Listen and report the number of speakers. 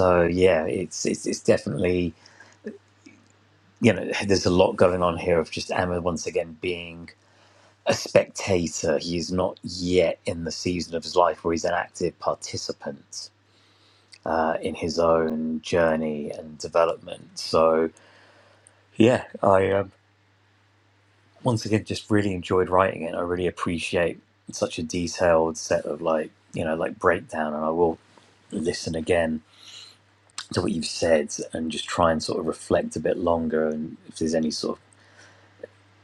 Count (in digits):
1